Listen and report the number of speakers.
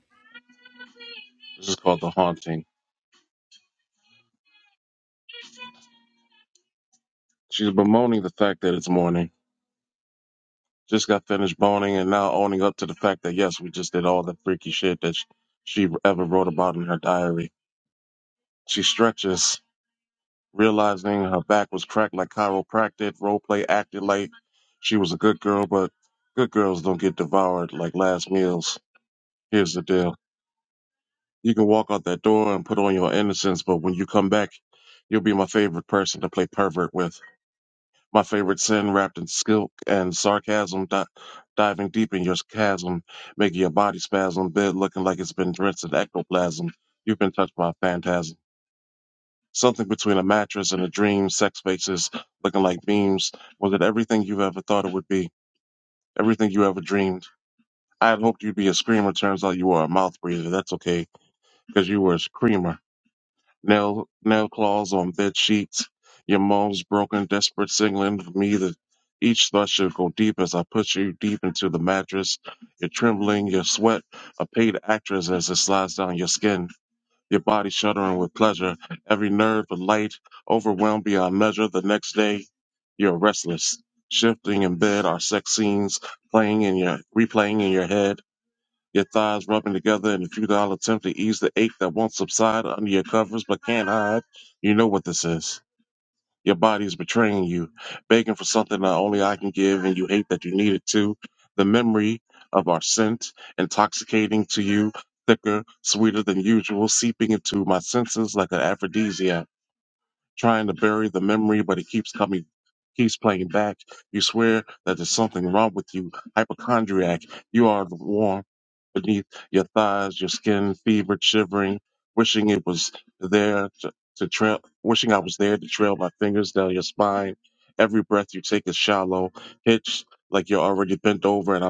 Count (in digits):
1